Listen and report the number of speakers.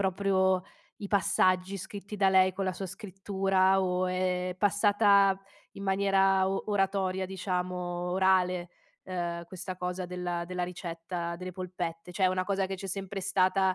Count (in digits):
1